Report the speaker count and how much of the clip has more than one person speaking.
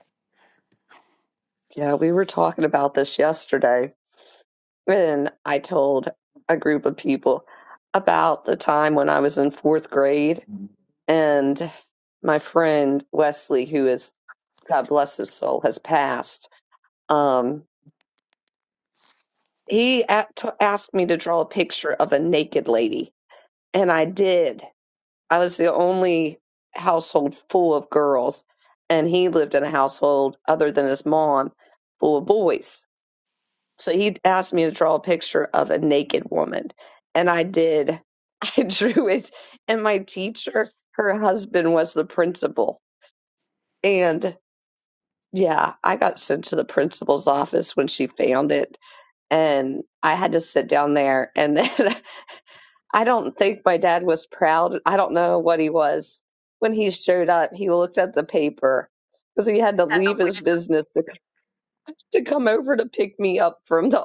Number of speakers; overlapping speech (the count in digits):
1, no overlap